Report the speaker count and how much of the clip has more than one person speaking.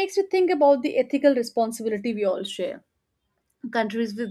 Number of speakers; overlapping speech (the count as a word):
one, no overlap